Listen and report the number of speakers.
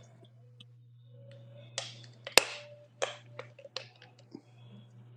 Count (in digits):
0